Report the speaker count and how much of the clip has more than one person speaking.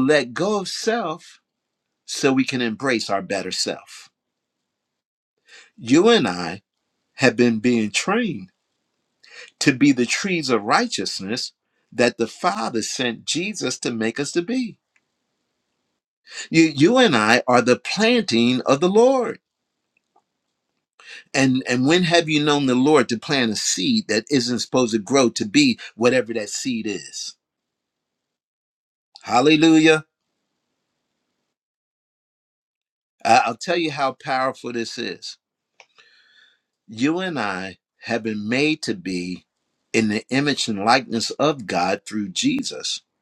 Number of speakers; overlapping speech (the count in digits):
1, no overlap